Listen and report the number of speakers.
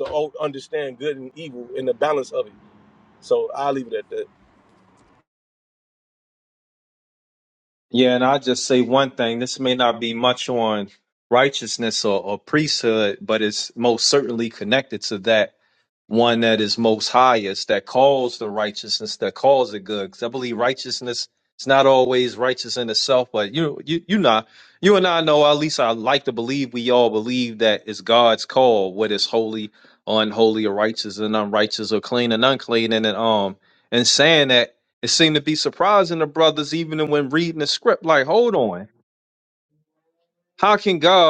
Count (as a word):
two